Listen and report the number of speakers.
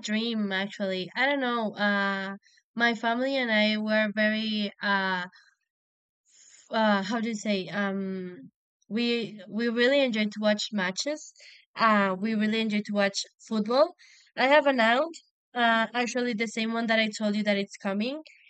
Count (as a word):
one